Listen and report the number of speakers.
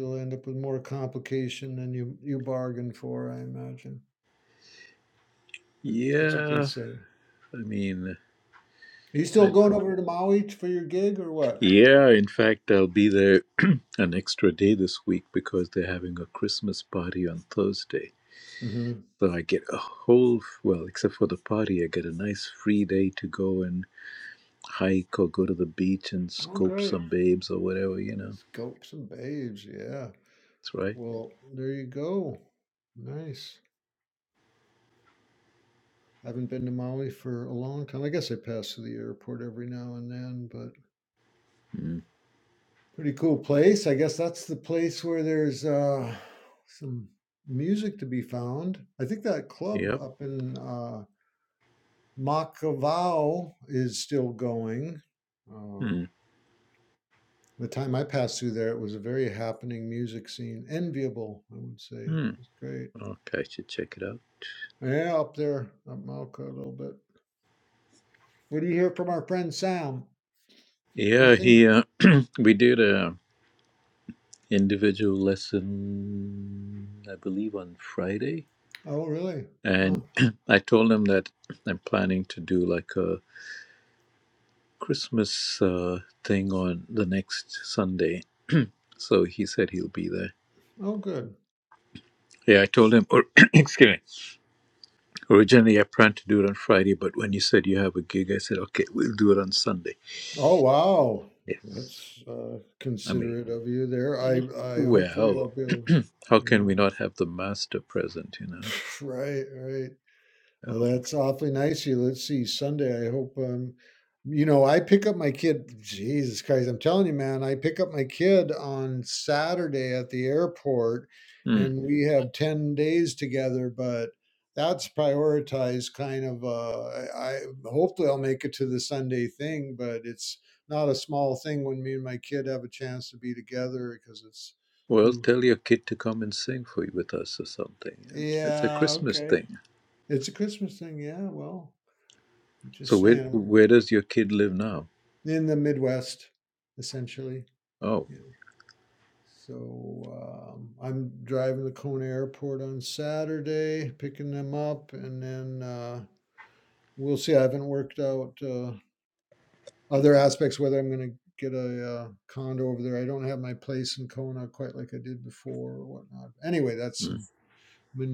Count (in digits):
2